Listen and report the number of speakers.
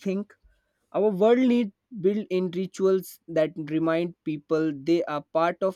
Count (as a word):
one